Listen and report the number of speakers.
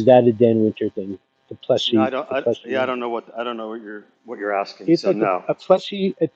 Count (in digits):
2